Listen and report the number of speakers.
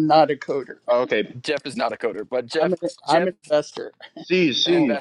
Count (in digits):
3